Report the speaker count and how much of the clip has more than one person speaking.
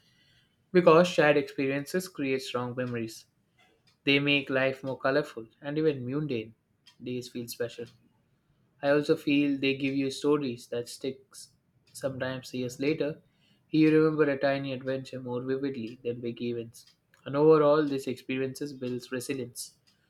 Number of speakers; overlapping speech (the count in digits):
1, no overlap